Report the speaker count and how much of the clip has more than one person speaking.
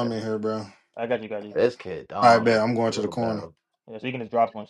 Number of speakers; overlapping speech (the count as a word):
three, about 27%